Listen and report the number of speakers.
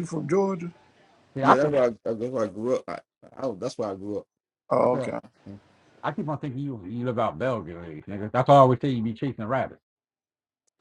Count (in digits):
3